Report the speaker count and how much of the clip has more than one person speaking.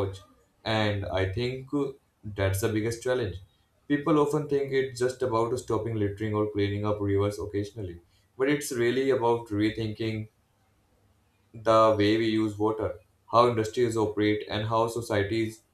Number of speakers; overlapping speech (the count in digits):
1, no overlap